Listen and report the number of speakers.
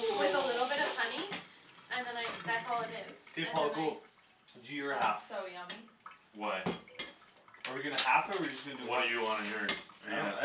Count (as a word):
four